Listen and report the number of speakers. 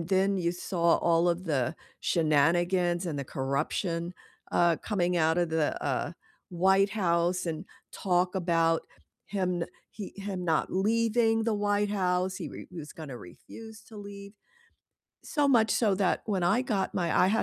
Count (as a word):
one